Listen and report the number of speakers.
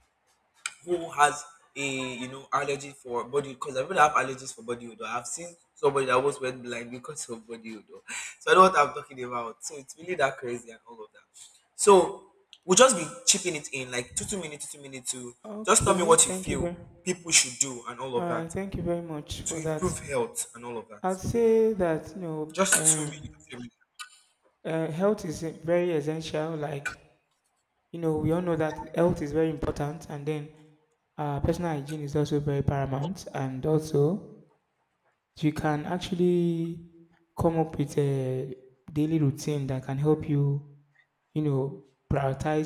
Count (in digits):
2